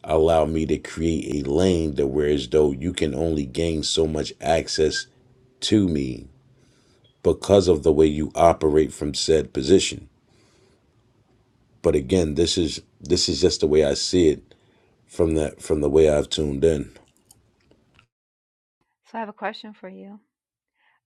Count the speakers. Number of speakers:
two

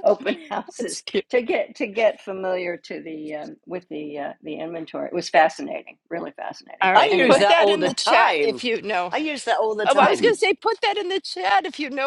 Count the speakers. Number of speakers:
three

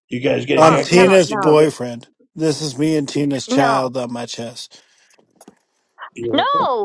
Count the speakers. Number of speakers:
three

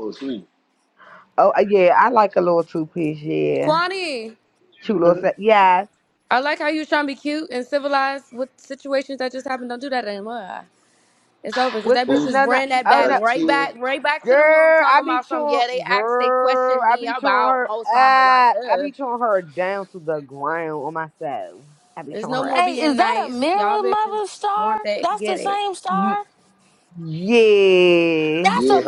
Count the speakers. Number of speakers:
four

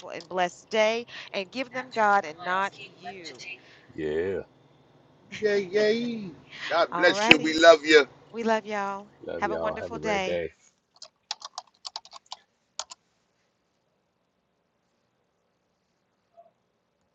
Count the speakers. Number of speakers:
three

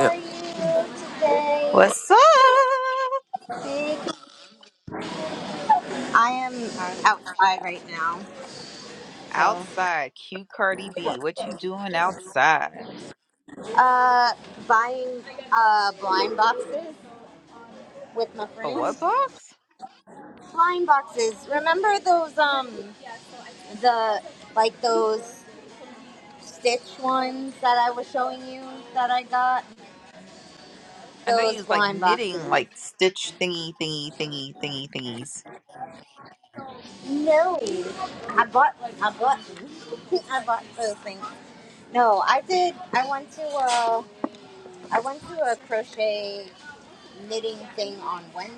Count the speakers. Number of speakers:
two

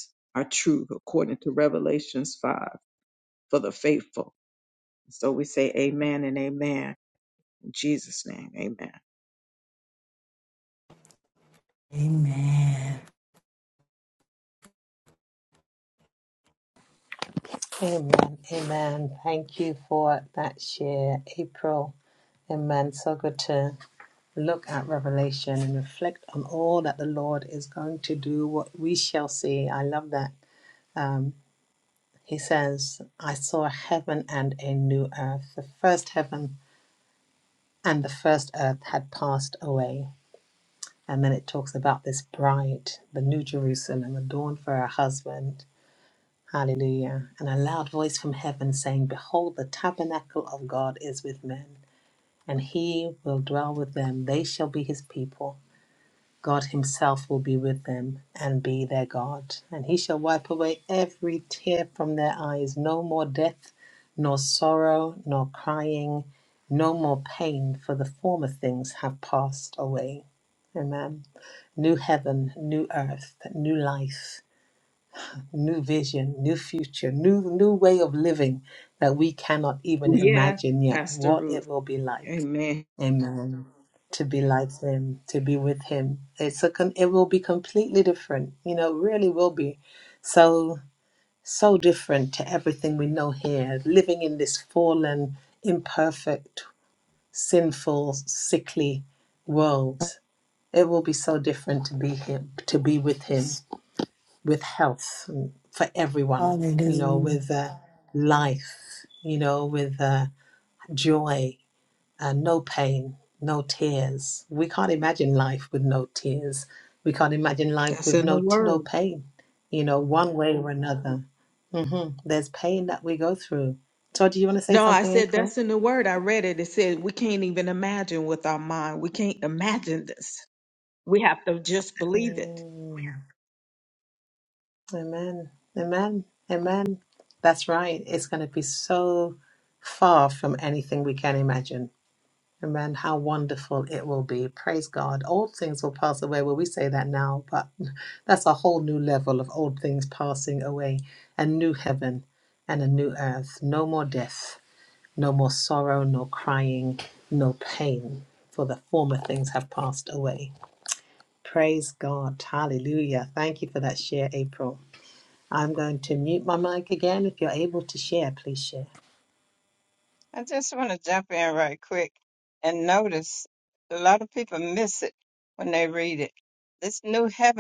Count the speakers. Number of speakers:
four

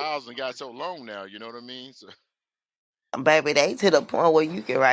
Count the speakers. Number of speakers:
two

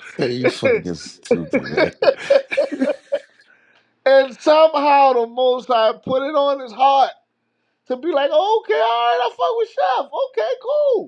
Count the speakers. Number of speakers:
two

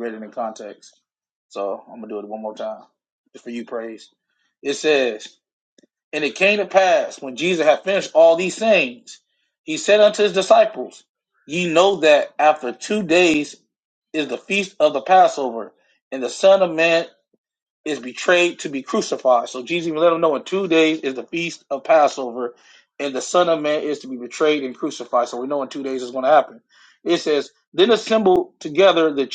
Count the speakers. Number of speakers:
one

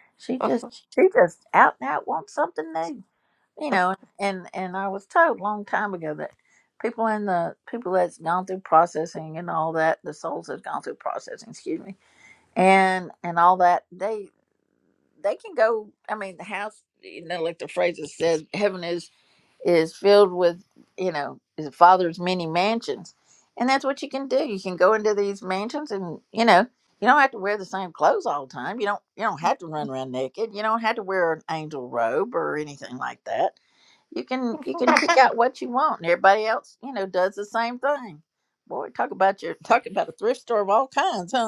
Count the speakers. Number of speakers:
one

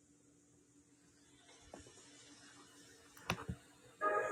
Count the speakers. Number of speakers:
zero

